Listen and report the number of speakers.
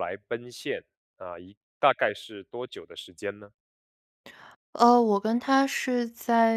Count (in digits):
2